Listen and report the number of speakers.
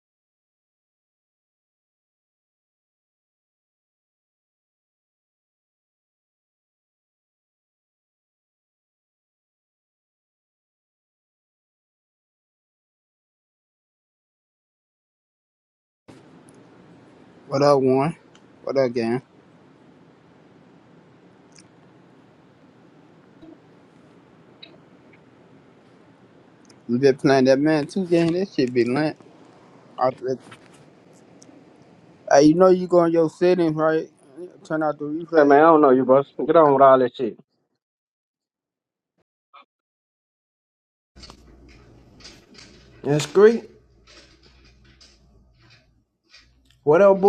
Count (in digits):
2